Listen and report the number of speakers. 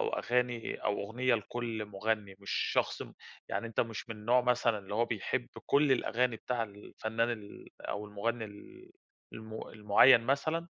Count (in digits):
1